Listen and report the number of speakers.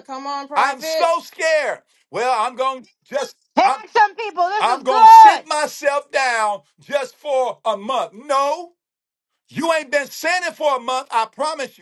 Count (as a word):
three